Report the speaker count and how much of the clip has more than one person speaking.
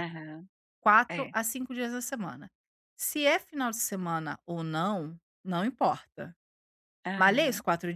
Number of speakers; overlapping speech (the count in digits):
2, about 9%